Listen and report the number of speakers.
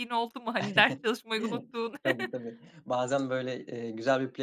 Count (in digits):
2